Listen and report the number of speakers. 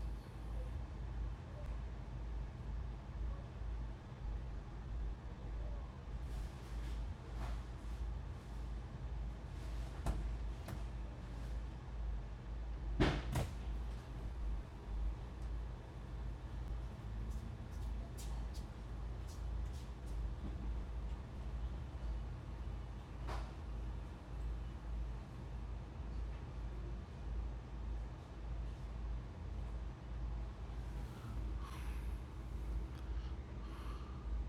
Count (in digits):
0